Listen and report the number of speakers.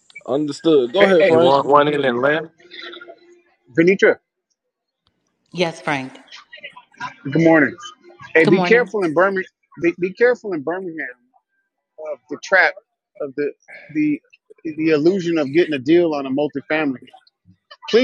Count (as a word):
four